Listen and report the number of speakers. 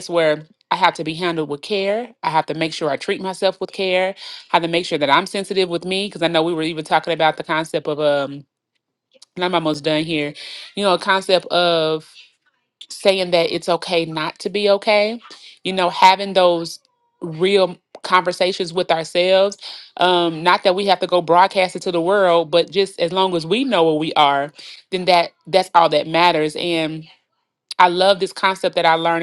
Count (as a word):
one